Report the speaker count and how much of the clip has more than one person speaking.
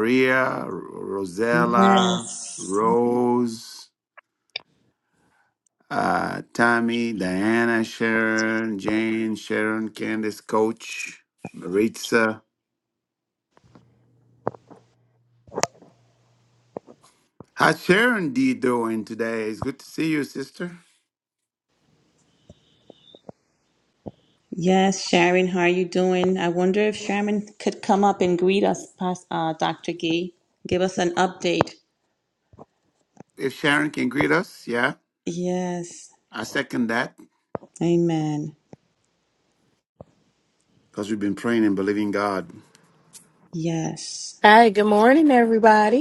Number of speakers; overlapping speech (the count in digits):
3, under 1%